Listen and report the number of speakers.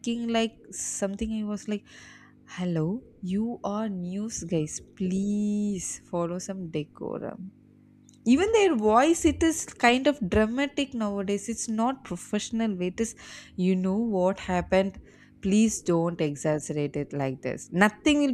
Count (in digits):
1